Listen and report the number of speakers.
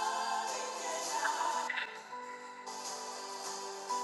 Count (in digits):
0